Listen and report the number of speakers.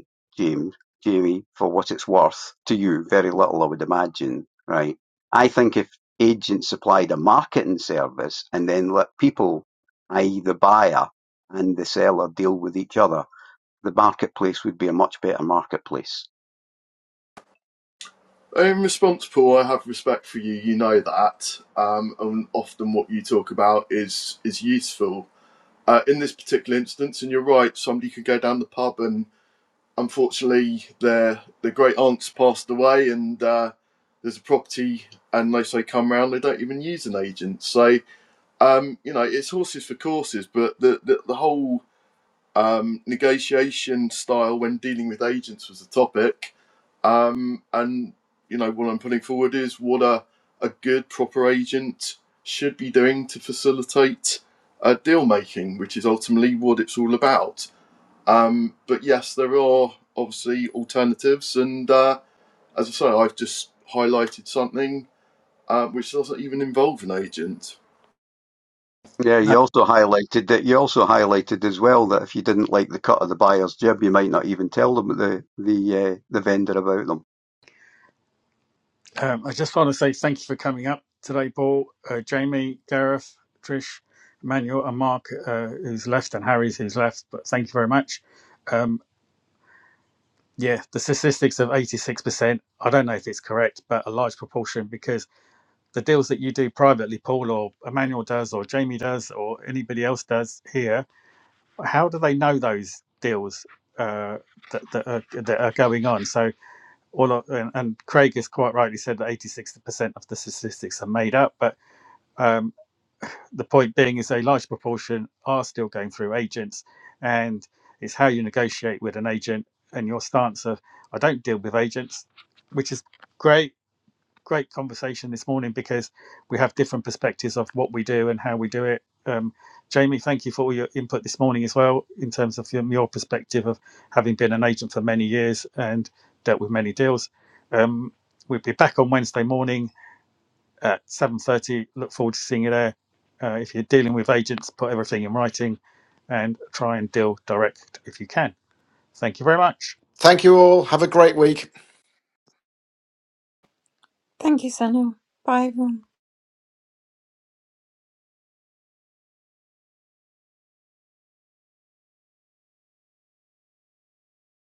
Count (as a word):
five